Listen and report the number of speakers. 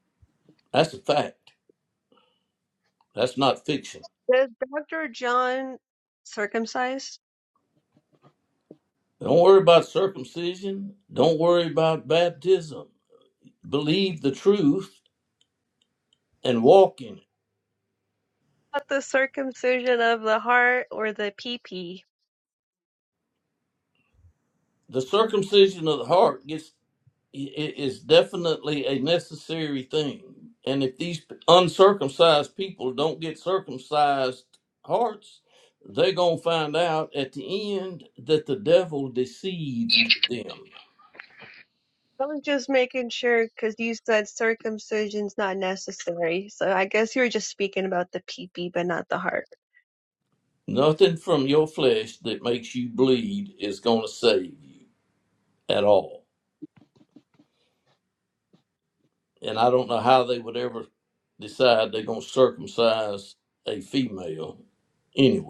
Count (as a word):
two